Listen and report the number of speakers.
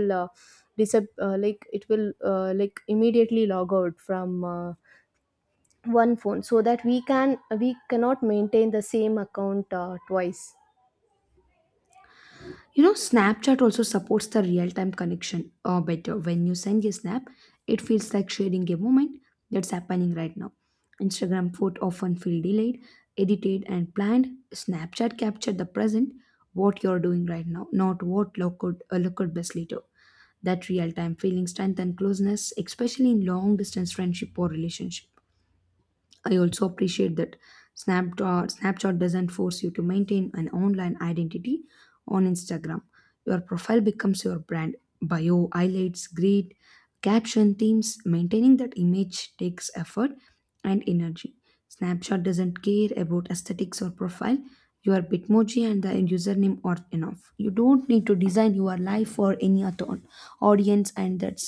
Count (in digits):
2